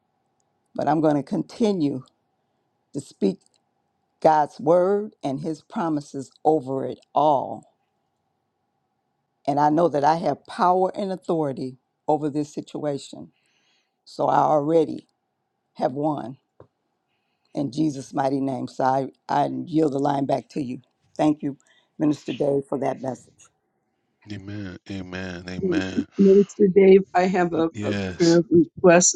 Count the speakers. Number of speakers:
3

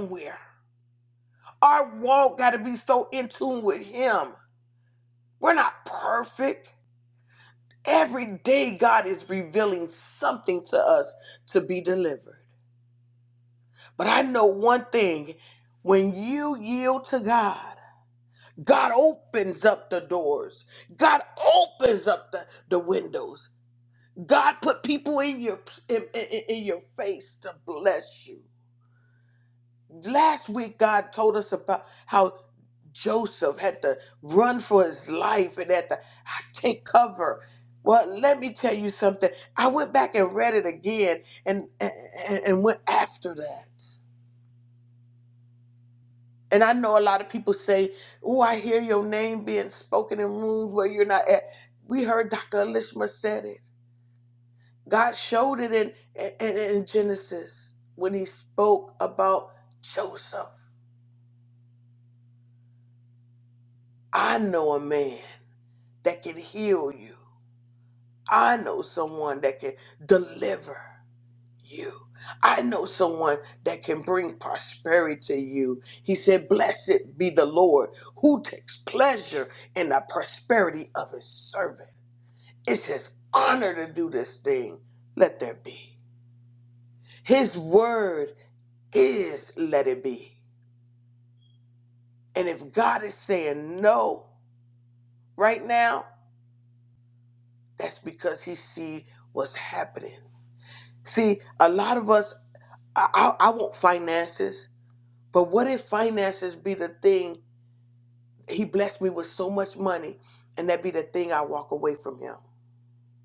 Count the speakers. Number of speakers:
1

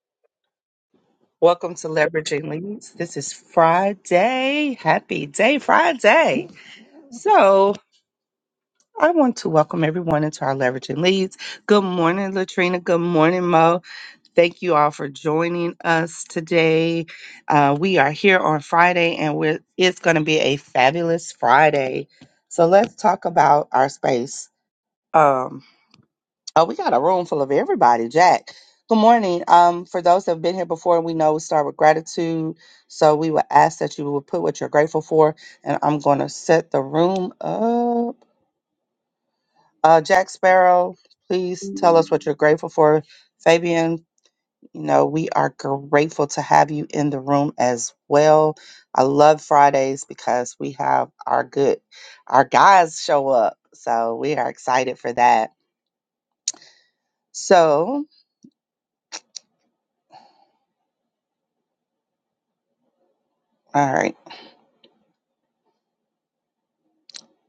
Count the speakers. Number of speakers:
1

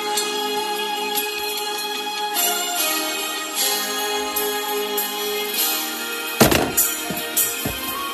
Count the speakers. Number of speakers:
0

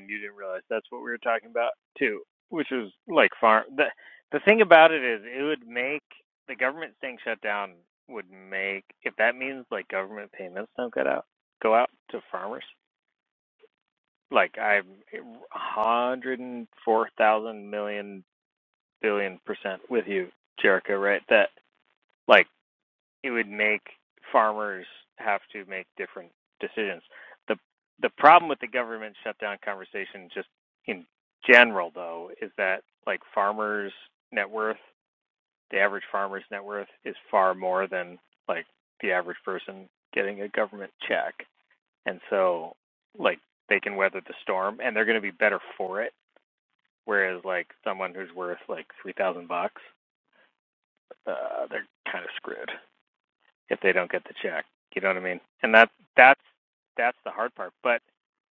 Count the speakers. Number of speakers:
1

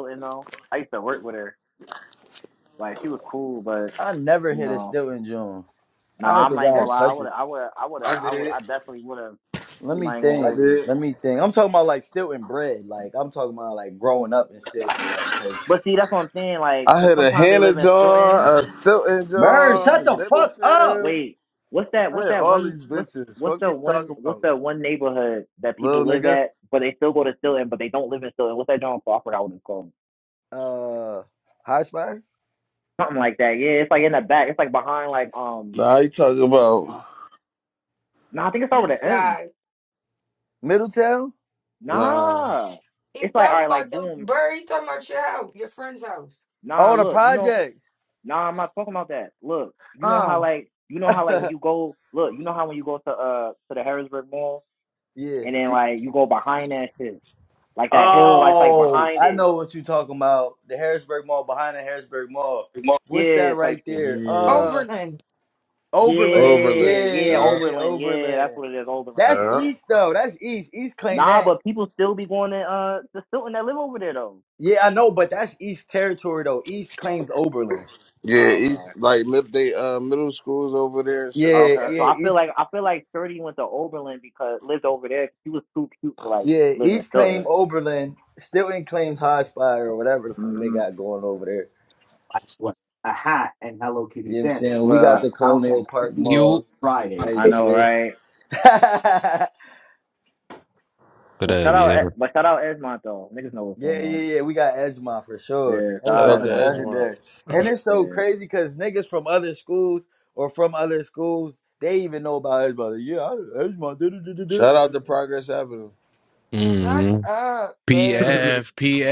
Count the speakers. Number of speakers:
5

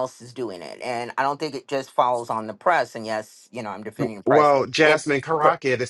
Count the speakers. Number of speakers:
2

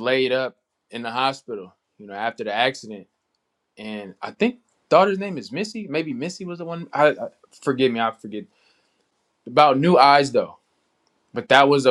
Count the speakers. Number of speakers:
1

